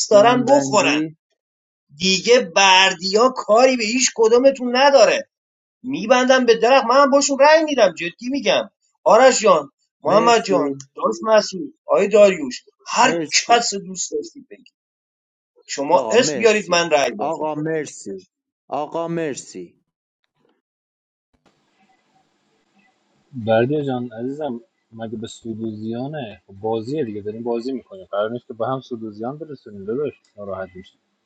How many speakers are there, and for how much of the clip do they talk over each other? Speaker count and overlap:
3, about 10%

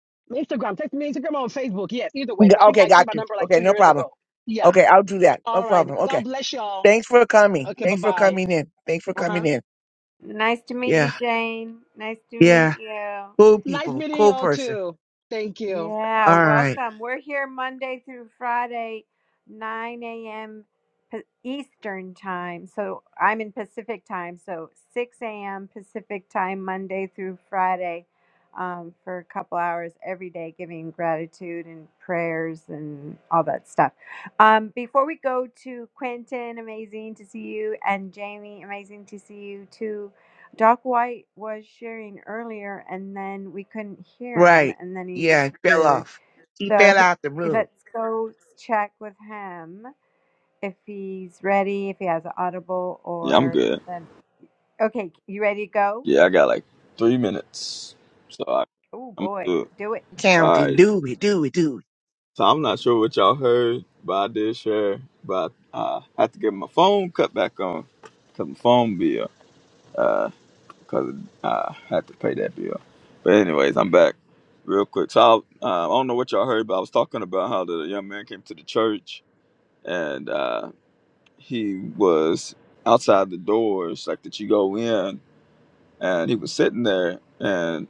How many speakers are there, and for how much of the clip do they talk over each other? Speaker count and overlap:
4, about 10%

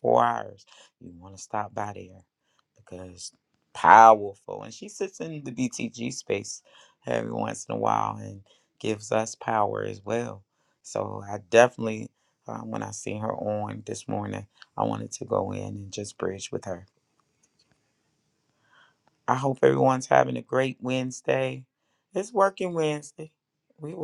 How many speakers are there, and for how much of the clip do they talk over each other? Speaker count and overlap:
1, no overlap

